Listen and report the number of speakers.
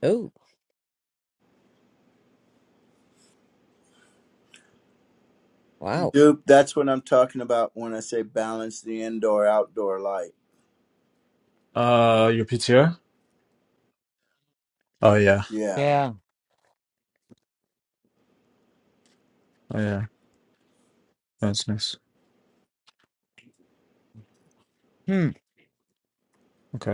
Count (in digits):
3